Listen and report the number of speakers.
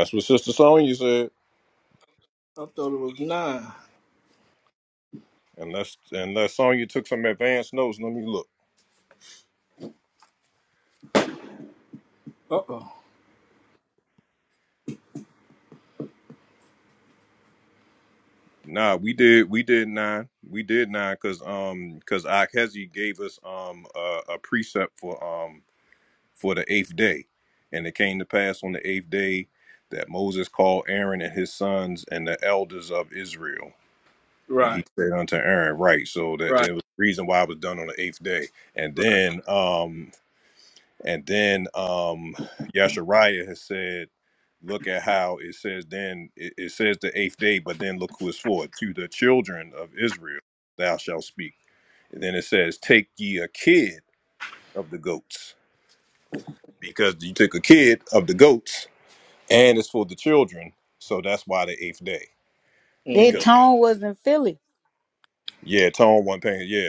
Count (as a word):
three